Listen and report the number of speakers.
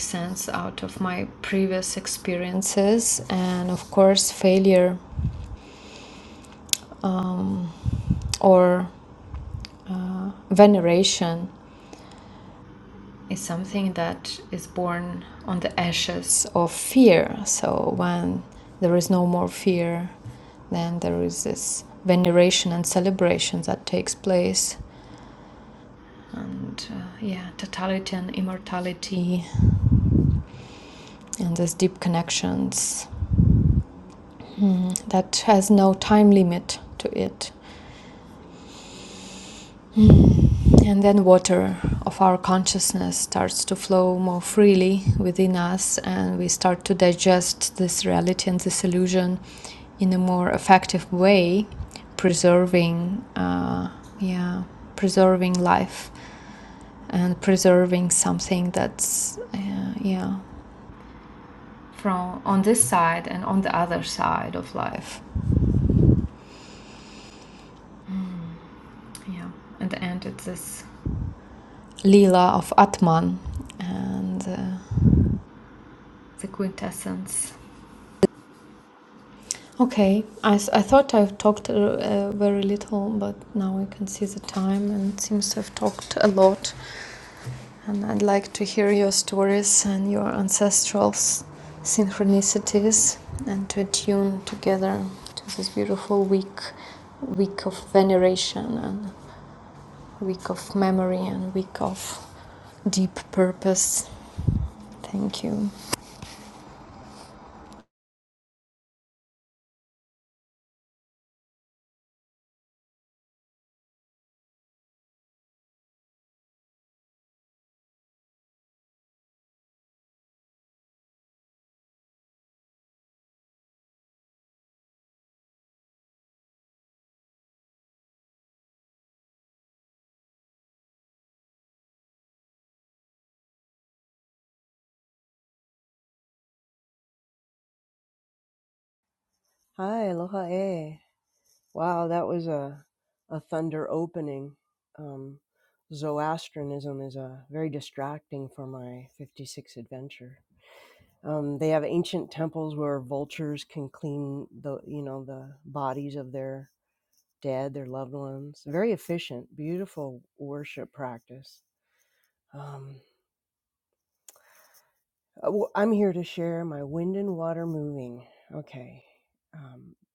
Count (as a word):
two